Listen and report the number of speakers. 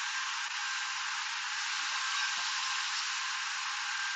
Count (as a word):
zero